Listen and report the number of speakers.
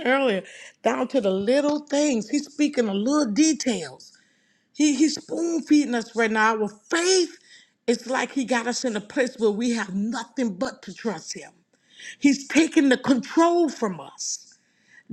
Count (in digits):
1